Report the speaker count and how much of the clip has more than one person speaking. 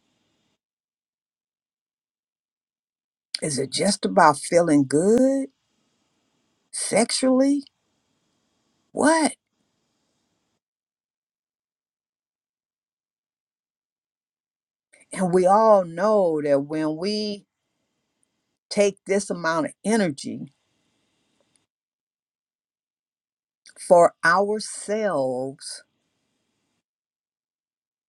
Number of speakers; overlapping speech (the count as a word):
one, no overlap